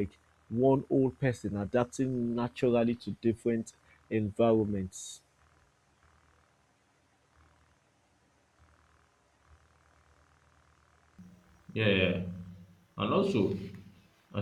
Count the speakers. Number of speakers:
2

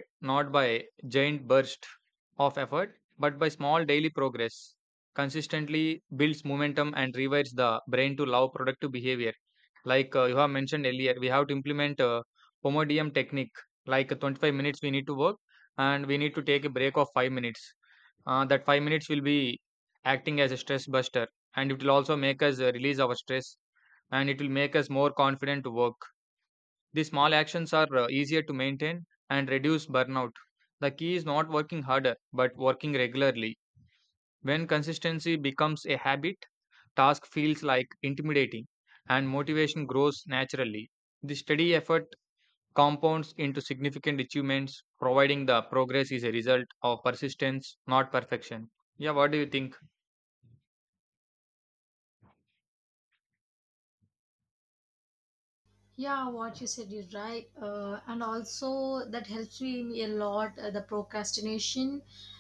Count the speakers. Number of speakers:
2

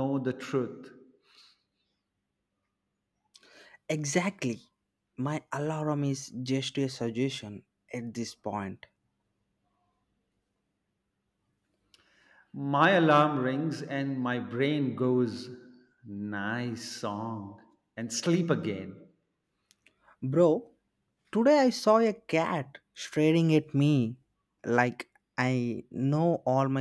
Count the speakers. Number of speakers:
2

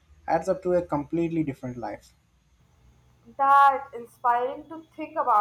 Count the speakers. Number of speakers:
2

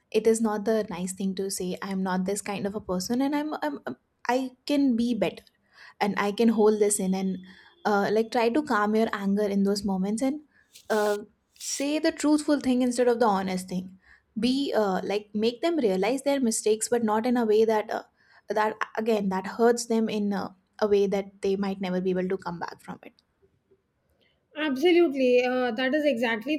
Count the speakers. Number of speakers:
2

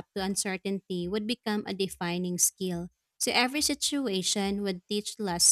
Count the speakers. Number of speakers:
1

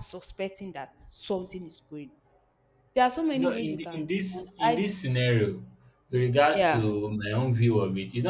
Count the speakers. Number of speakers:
2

